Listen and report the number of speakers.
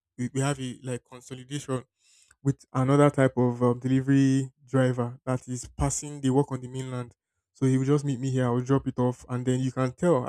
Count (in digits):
1